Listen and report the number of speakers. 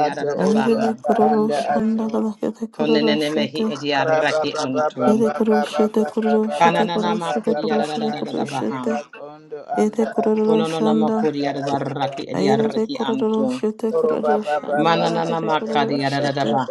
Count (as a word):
three